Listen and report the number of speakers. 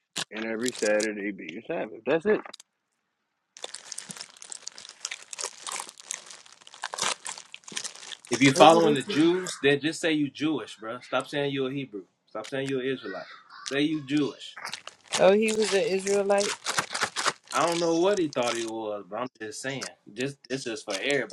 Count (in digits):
3